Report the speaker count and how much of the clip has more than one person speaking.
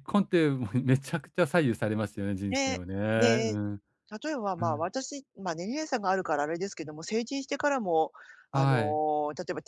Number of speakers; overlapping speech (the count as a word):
two, about 13%